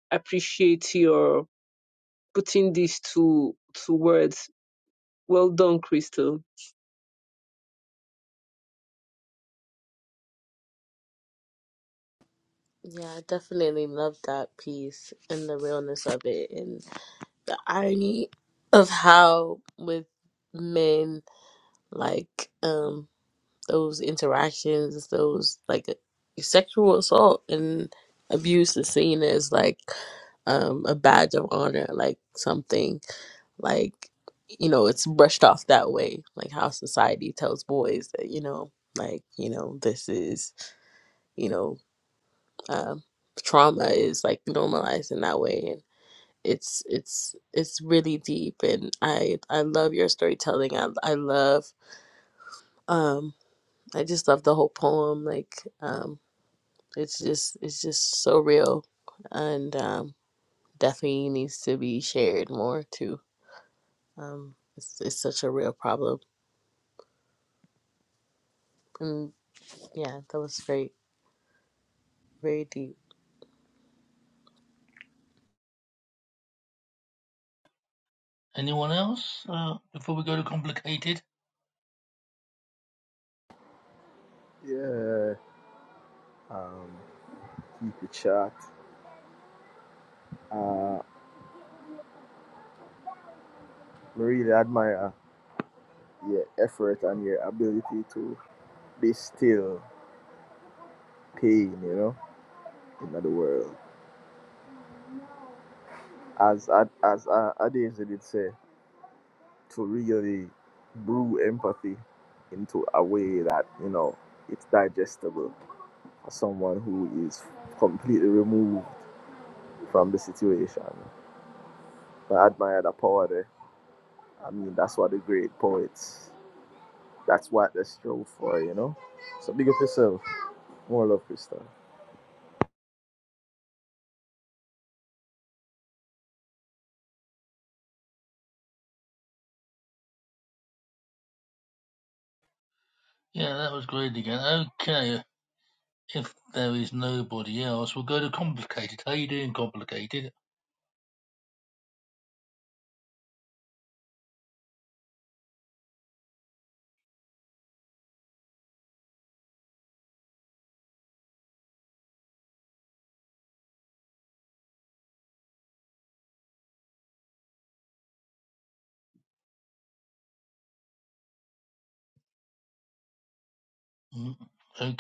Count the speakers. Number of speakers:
4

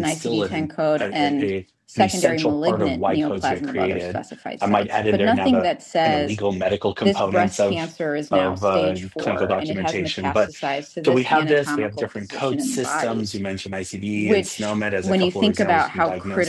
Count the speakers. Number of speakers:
2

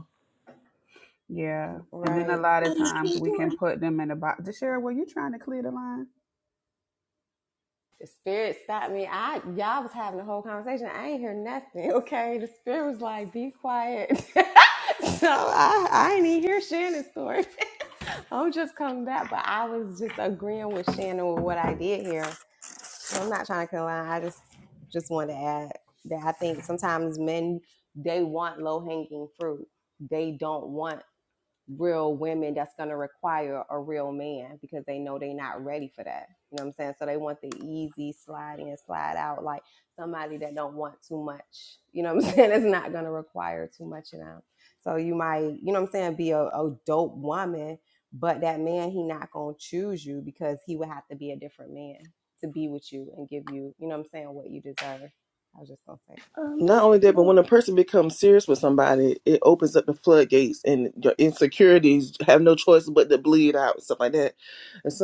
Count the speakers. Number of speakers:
3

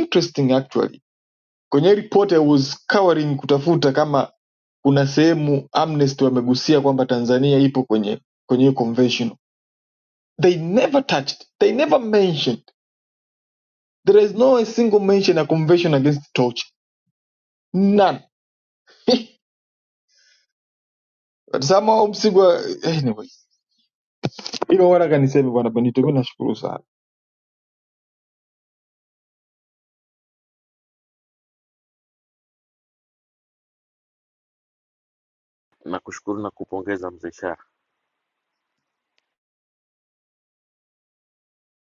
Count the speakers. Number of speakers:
2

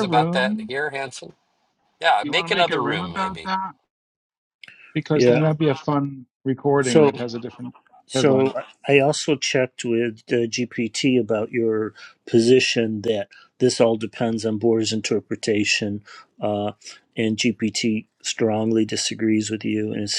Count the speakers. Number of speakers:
3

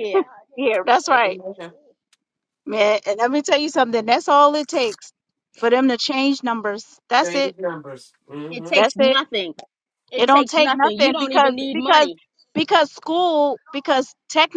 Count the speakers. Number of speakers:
3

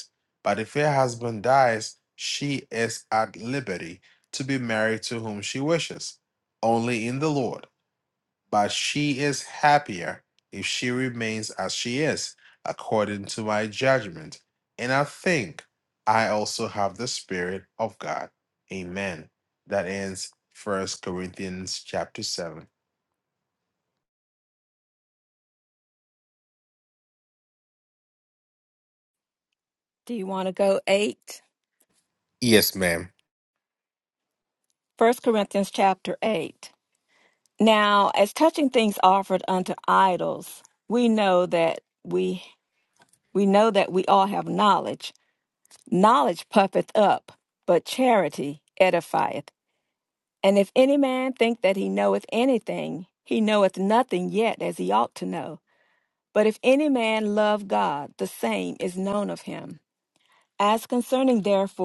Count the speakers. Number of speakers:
2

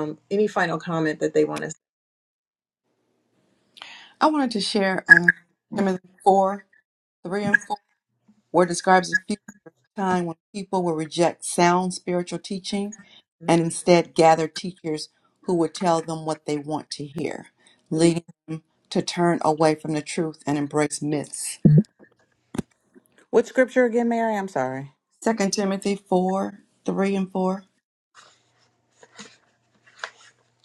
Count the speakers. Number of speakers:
3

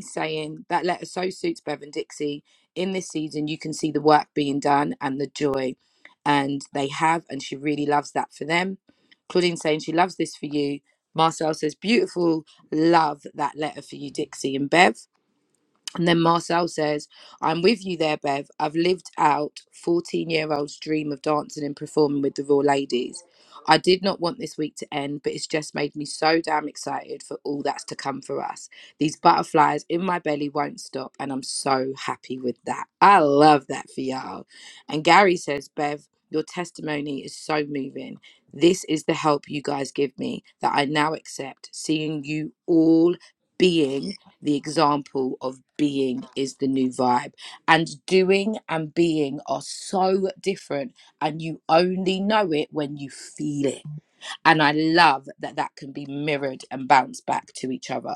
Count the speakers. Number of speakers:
1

